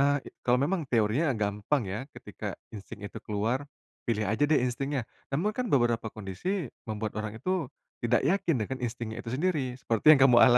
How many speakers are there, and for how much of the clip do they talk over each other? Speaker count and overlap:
1, no overlap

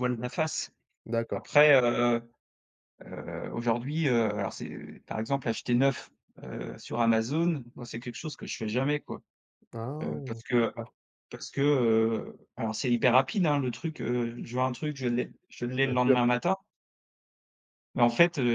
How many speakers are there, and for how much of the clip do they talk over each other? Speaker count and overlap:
2, about 7%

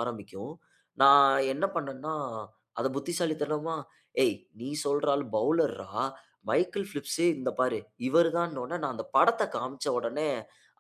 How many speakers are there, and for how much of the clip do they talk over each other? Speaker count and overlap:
1, no overlap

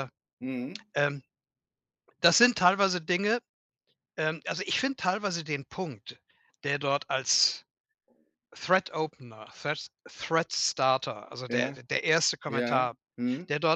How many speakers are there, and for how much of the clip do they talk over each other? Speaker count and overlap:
2, about 5%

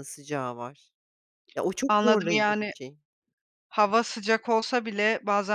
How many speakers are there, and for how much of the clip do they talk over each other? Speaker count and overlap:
2, about 15%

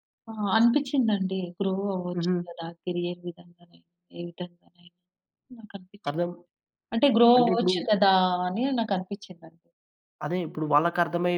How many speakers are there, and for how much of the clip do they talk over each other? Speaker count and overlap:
2, about 7%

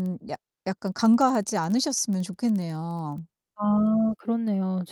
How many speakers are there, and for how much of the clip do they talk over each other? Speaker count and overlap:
2, no overlap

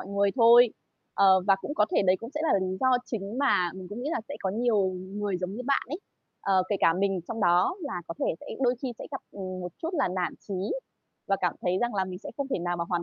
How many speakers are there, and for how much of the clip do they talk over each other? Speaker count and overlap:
1, no overlap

